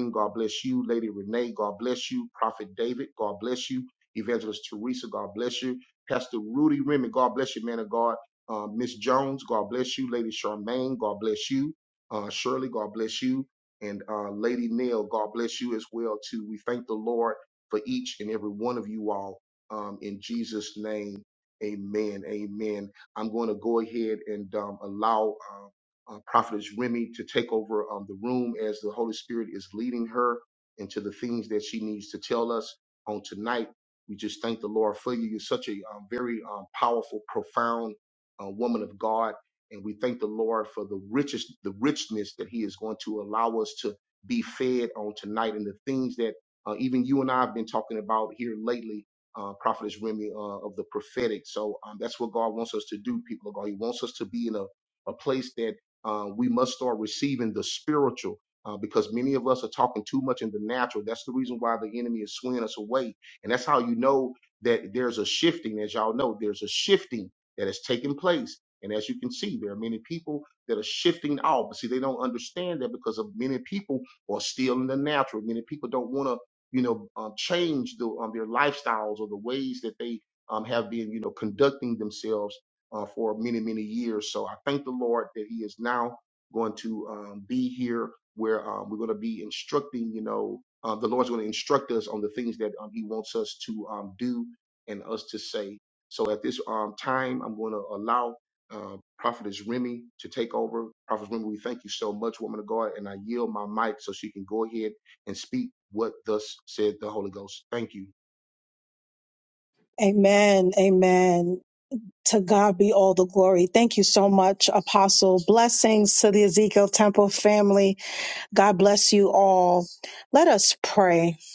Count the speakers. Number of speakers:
2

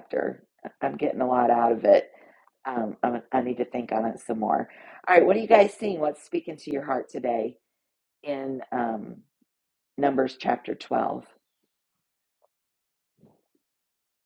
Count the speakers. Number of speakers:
1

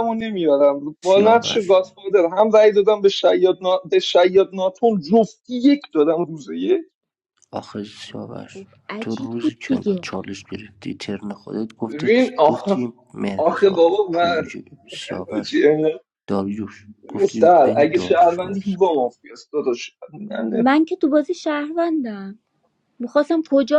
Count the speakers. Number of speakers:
3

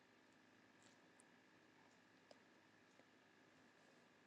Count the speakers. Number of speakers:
0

